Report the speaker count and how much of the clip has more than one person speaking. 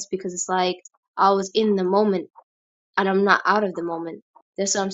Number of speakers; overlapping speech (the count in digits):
1, no overlap